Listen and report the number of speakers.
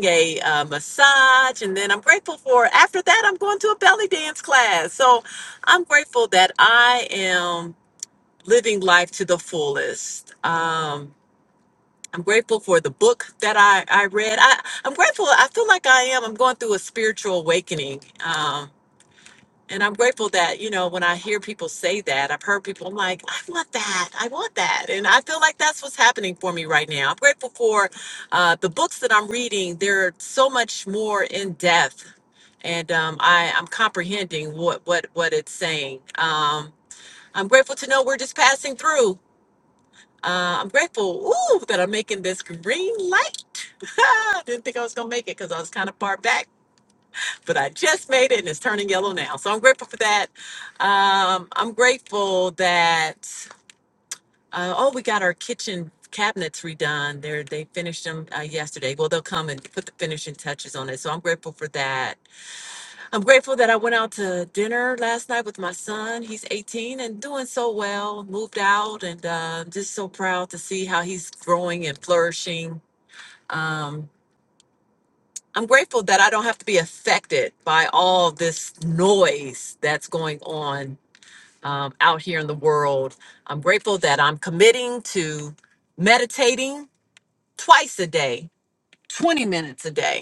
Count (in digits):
1